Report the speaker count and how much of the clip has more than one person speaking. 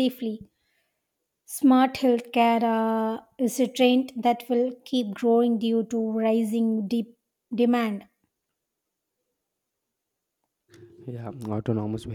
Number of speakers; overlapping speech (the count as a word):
two, no overlap